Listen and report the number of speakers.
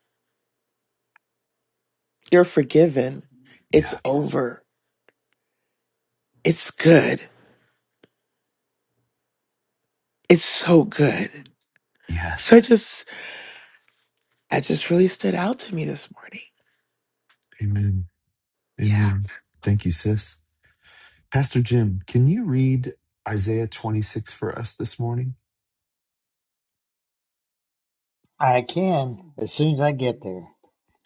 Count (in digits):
3